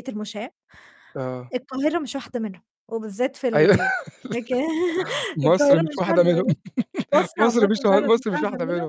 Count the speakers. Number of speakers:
2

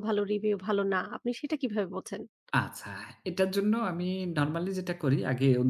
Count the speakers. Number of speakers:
2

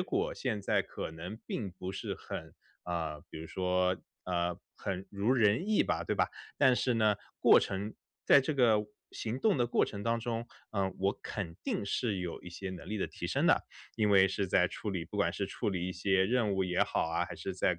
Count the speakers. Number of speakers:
1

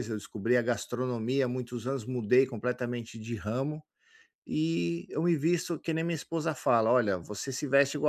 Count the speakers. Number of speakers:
1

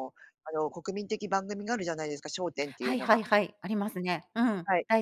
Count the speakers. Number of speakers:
2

